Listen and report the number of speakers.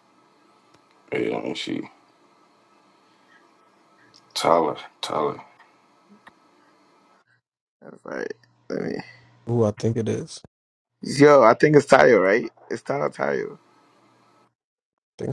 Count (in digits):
3